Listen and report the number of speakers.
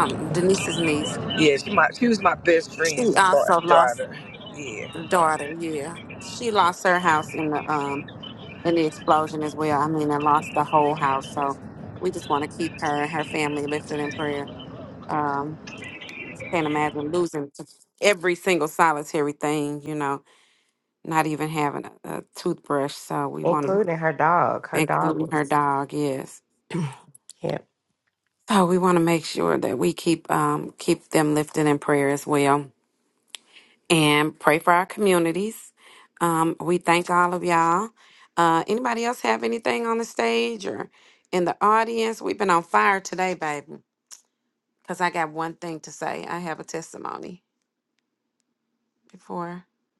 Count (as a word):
three